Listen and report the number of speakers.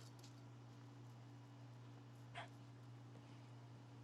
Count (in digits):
0